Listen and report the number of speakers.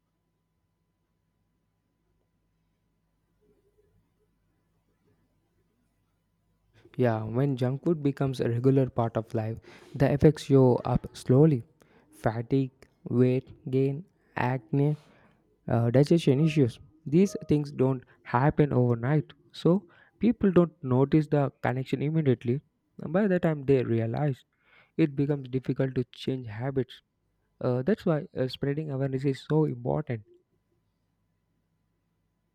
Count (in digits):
1